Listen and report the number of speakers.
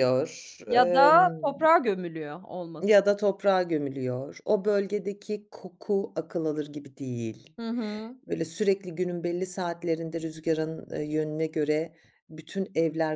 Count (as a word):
two